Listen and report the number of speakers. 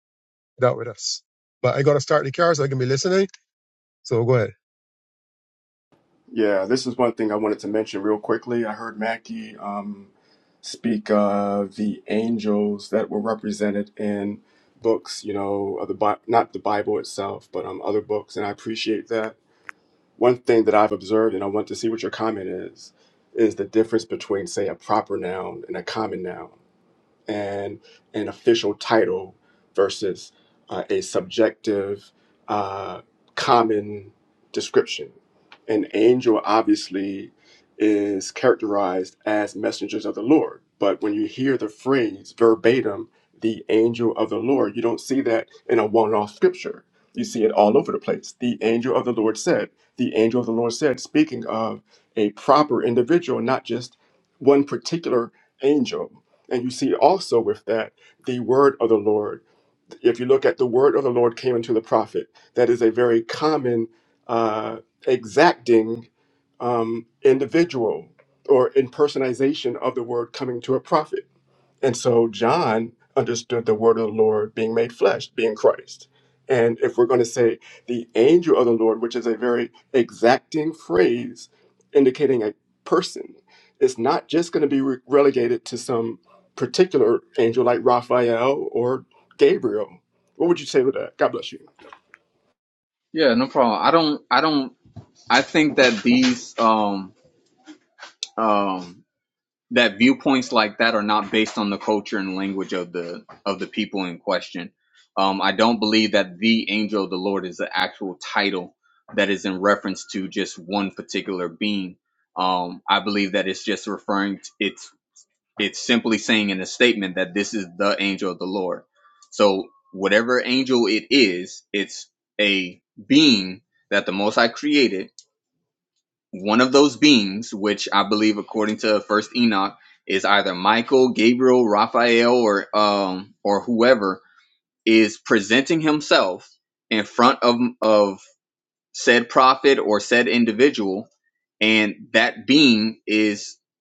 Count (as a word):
three